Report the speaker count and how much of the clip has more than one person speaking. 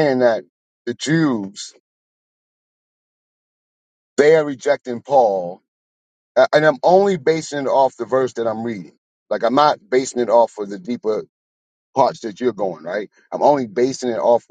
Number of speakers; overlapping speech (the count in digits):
1, no overlap